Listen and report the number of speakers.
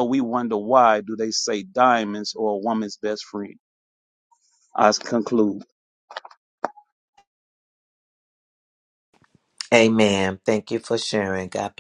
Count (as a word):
two